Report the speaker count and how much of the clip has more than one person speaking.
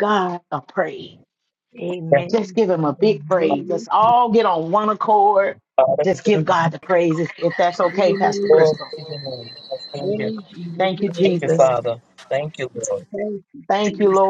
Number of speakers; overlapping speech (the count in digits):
3, about 28%